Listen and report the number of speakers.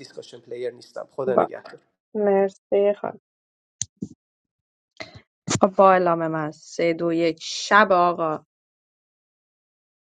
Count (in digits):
2